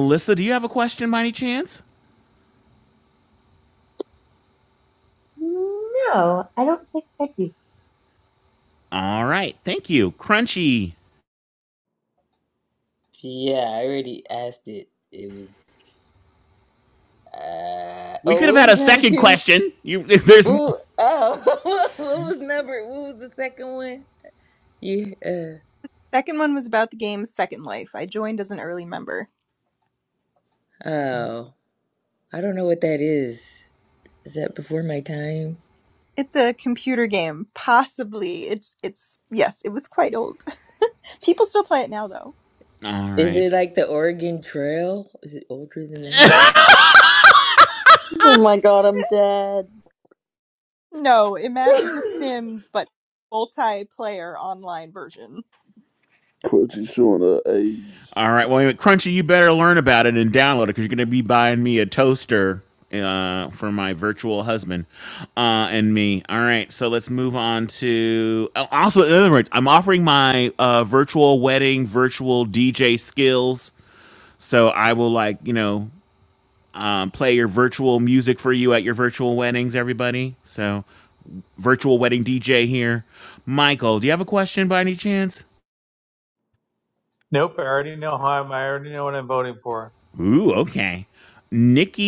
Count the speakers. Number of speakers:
seven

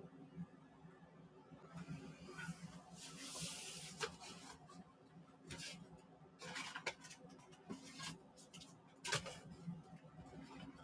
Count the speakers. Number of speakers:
zero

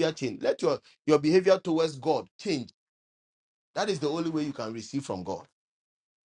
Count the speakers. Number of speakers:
one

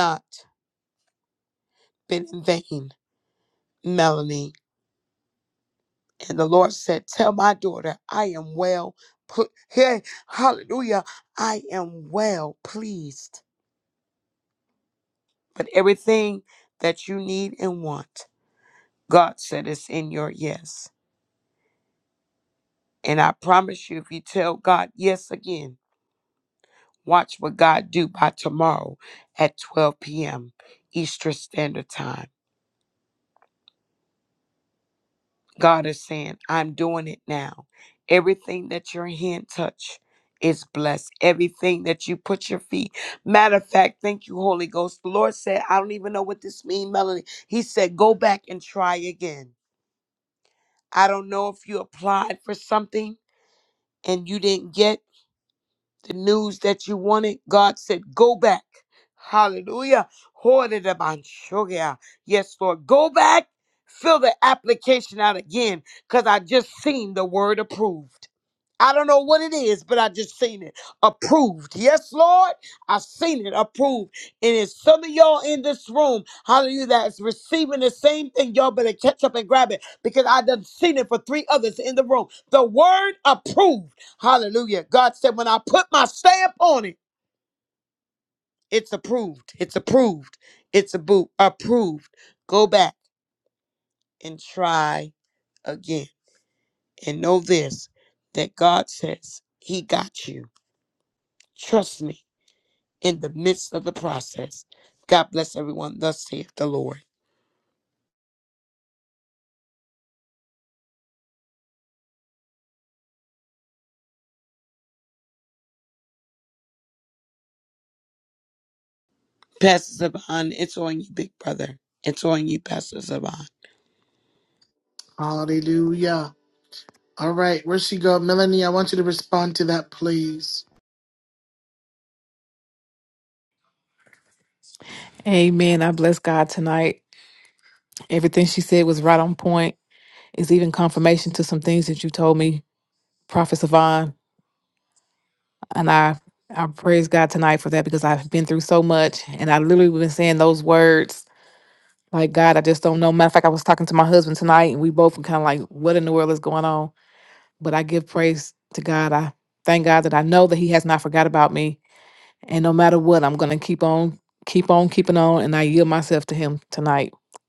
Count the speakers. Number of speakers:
three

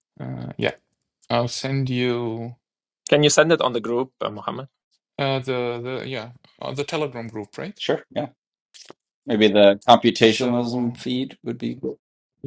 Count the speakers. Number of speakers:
three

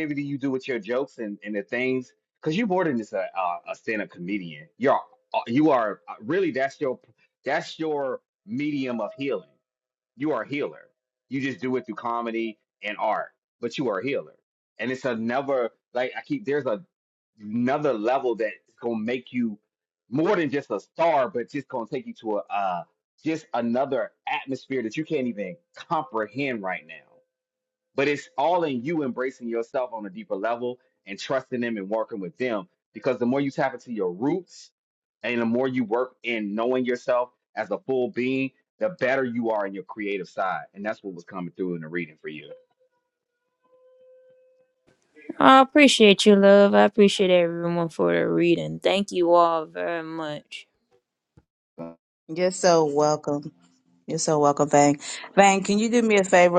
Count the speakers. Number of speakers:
three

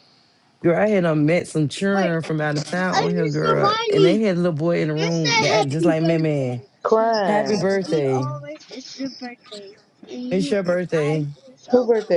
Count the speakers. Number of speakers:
three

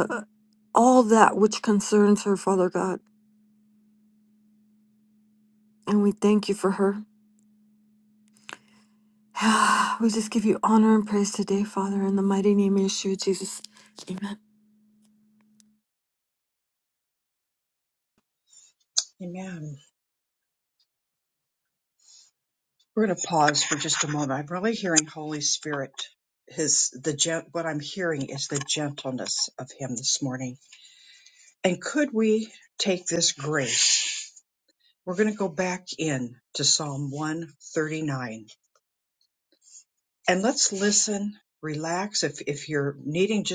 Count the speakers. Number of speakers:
two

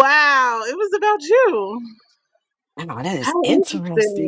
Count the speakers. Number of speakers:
two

